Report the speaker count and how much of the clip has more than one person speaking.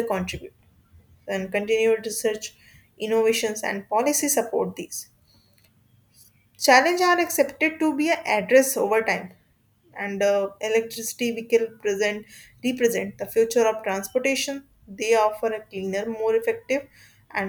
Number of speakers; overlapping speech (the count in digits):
1, no overlap